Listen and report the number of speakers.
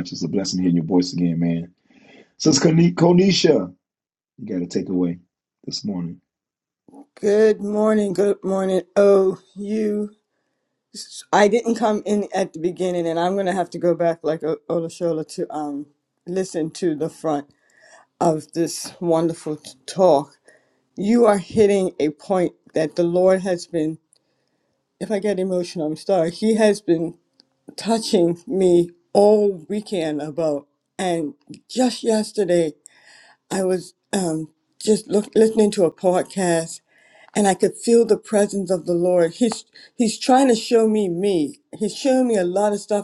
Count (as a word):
two